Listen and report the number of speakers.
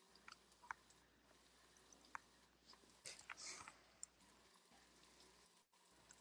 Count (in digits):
0